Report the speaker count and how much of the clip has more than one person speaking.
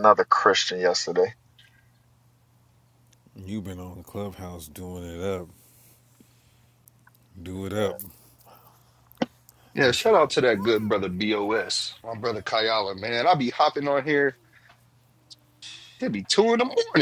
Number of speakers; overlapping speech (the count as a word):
three, about 1%